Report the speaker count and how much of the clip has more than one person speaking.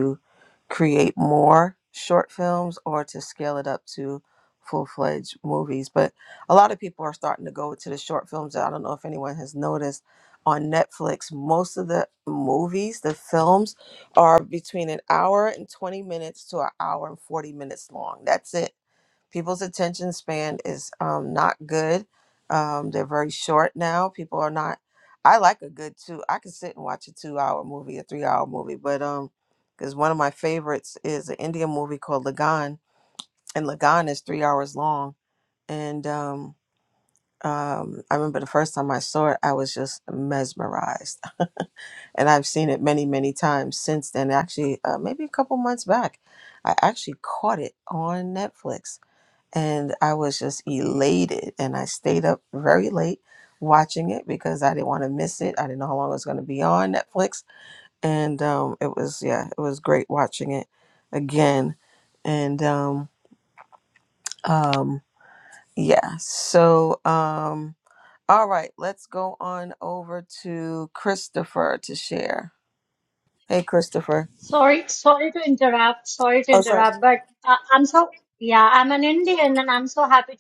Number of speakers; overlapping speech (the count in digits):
2, under 1%